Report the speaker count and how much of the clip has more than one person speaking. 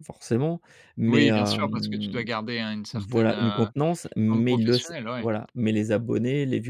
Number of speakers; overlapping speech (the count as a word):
two, about 44%